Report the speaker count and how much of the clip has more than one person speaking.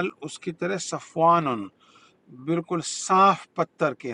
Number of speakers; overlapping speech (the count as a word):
one, no overlap